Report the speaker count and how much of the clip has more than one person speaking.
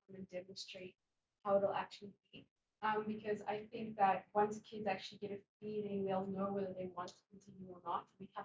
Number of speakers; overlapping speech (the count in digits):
1, no overlap